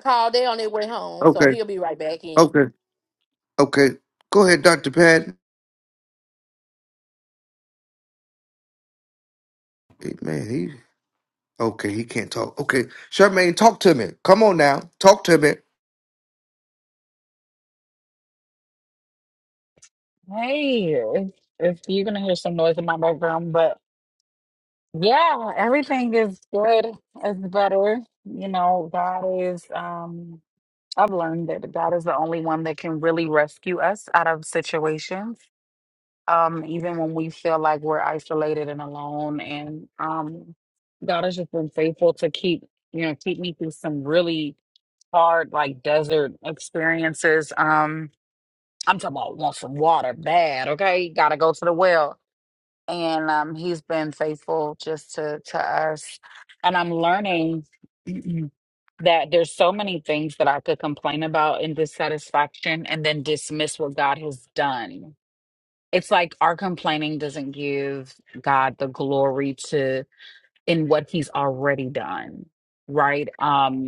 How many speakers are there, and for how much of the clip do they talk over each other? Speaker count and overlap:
three, about 1%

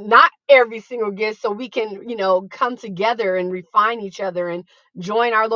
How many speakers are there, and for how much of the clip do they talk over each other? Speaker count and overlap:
one, no overlap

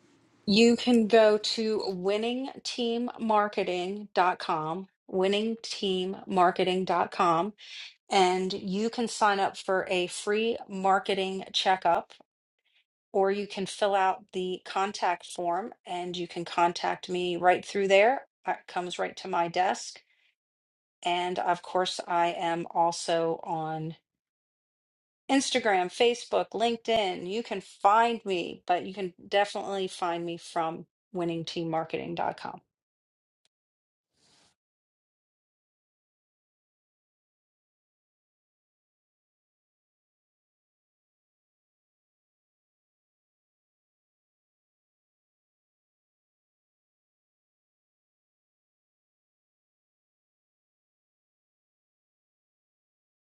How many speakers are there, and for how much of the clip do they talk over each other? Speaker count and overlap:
one, no overlap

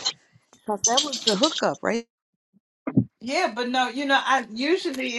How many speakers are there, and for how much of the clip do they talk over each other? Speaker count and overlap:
two, no overlap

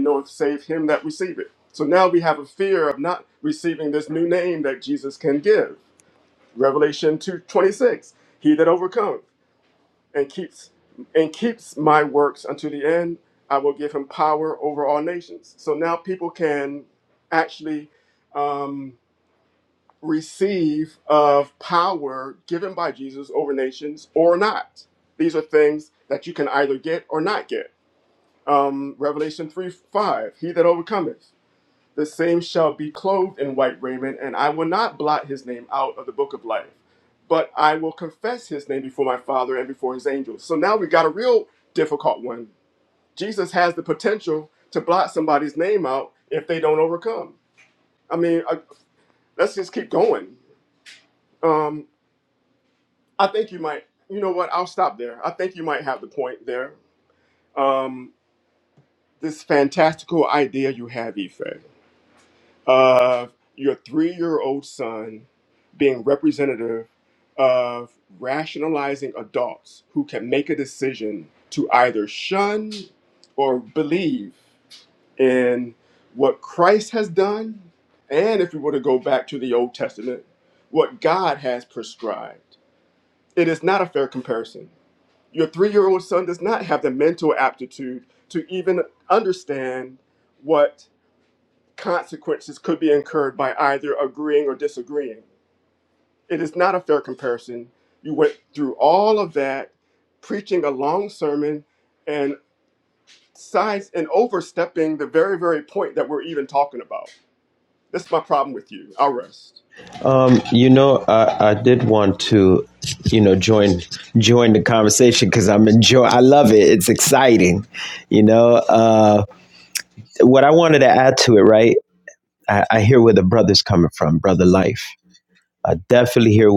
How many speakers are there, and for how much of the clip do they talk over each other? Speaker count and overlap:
two, no overlap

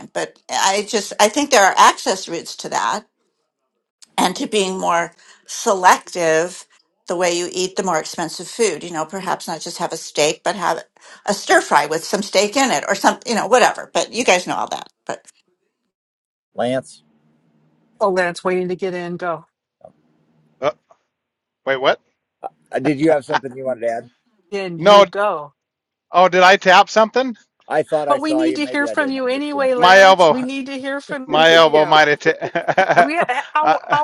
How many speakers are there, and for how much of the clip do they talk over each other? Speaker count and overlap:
four, about 12%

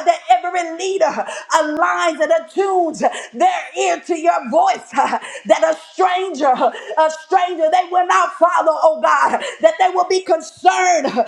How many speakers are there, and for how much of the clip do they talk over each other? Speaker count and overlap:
one, no overlap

